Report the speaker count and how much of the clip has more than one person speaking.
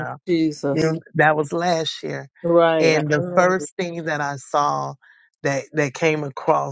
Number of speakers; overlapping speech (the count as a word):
two, about 16%